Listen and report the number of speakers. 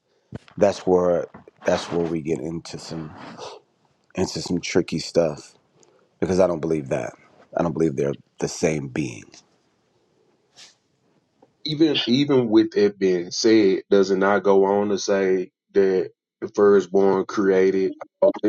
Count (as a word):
two